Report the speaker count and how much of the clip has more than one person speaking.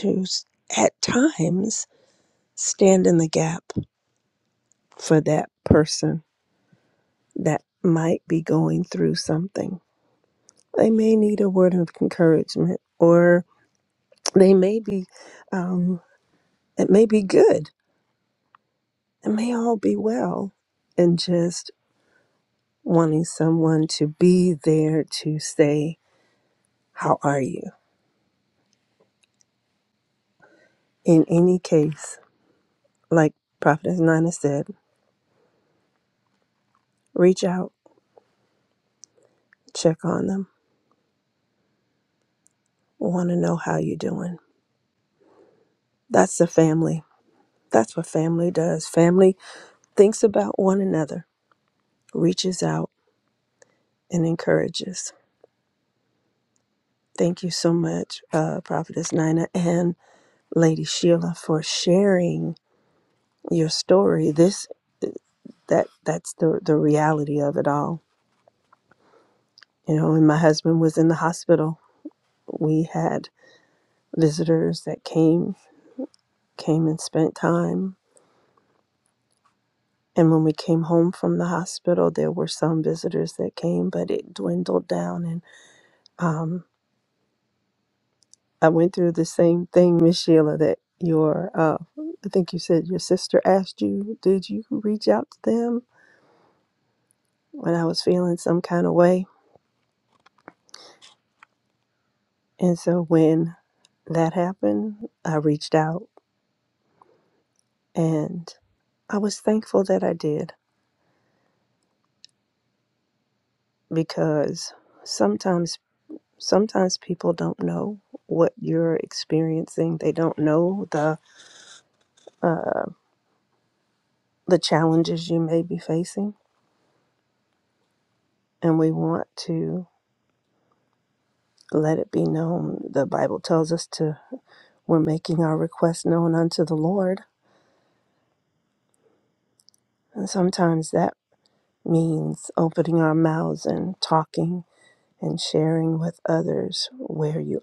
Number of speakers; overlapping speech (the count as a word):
one, no overlap